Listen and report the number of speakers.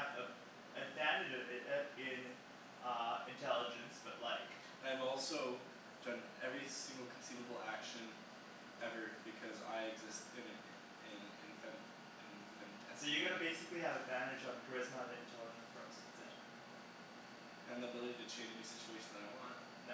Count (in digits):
2